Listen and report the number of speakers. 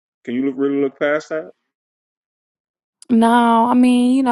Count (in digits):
2